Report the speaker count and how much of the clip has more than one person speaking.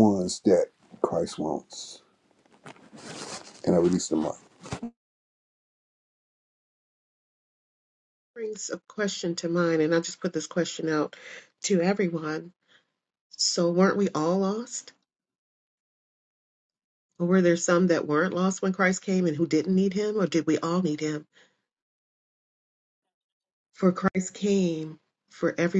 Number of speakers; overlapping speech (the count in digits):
2, no overlap